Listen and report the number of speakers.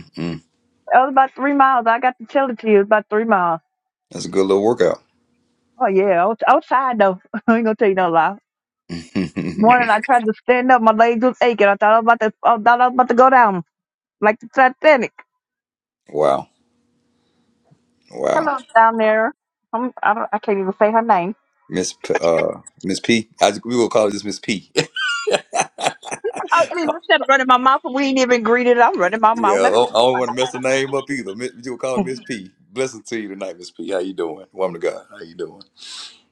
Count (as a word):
two